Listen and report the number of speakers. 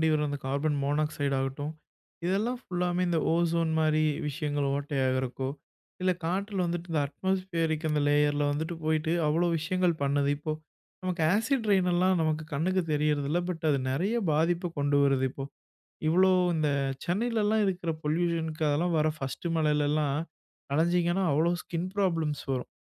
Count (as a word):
one